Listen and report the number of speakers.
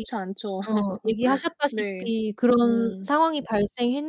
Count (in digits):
2